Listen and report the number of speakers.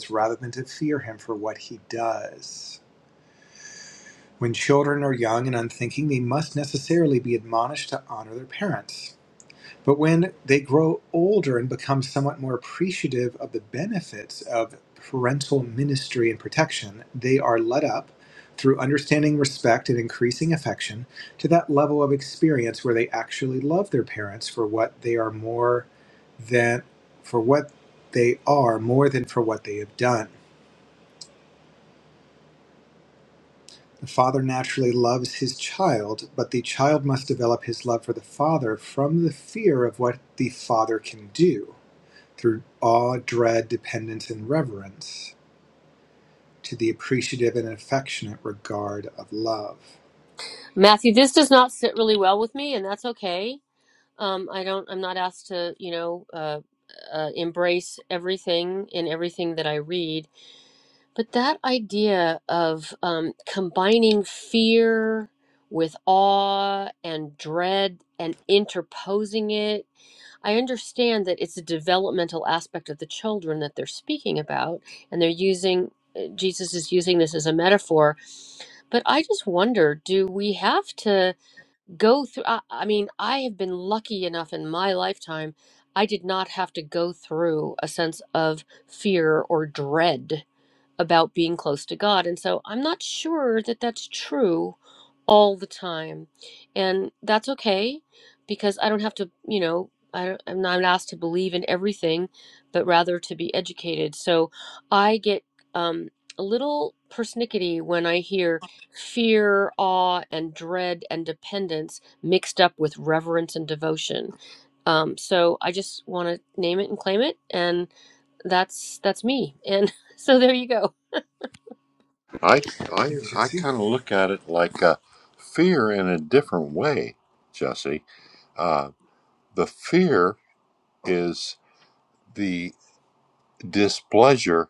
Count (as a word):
three